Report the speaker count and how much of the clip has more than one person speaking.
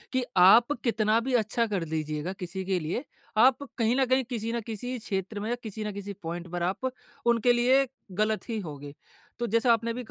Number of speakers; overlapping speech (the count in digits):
1, no overlap